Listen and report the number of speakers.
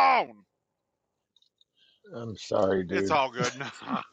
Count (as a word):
two